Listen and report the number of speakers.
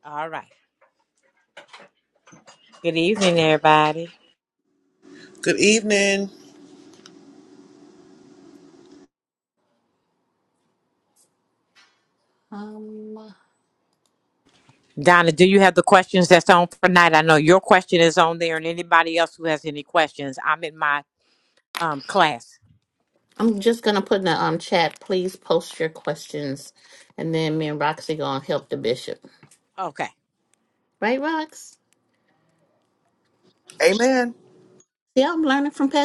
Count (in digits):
3